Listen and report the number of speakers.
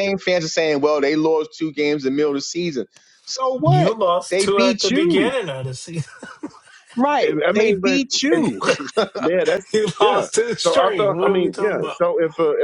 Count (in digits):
3